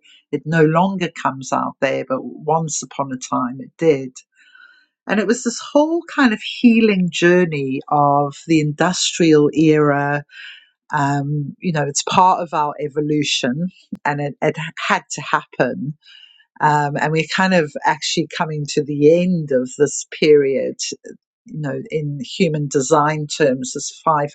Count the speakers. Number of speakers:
1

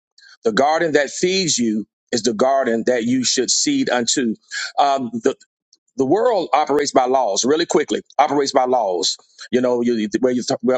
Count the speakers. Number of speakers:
1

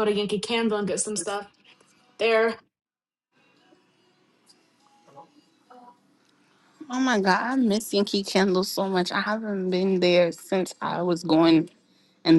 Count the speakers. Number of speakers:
2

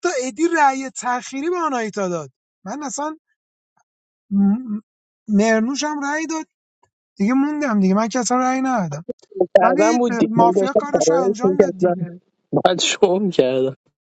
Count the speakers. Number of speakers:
2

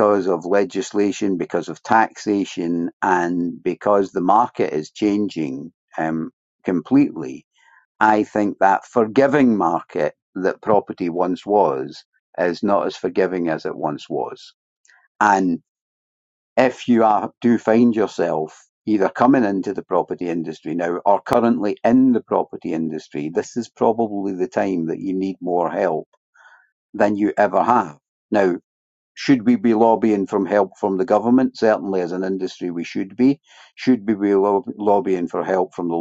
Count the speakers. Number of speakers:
1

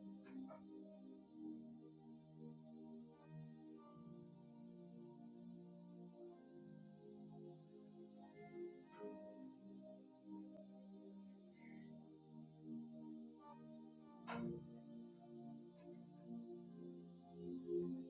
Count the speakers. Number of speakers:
0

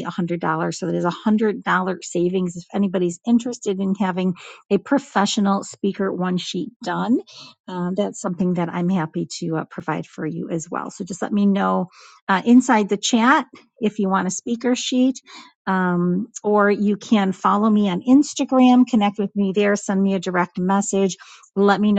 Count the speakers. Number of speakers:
1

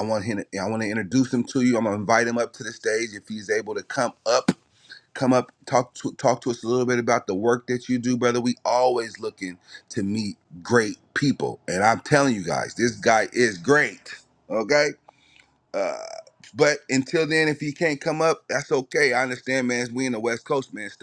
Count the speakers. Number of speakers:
1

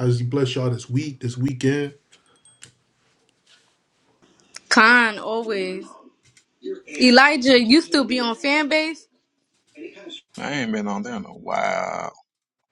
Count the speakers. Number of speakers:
3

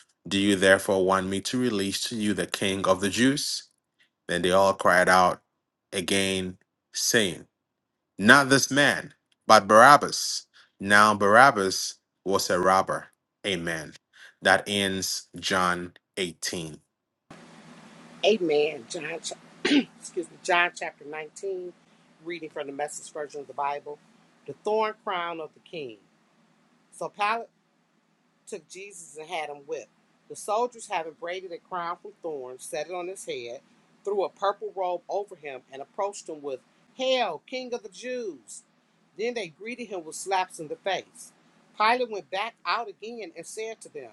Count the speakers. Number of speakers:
2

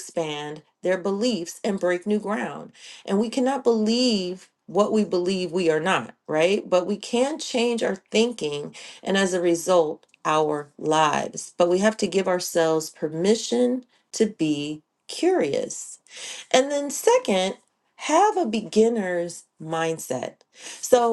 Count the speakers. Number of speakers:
1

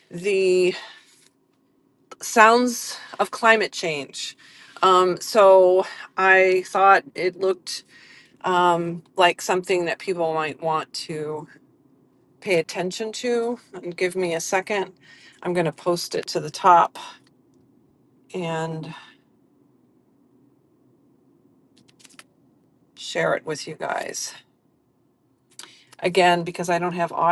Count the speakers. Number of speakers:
1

